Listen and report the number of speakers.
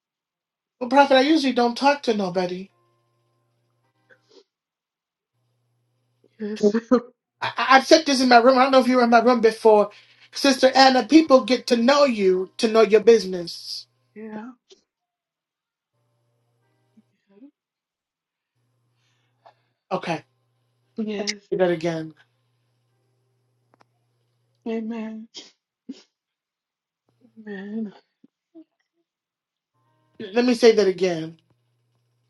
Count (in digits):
2